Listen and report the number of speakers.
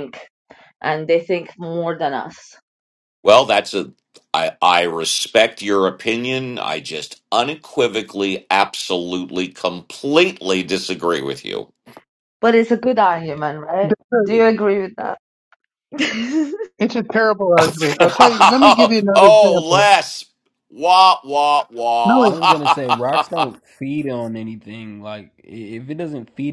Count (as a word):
four